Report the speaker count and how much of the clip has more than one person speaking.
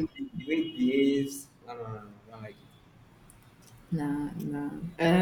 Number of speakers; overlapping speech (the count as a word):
two, no overlap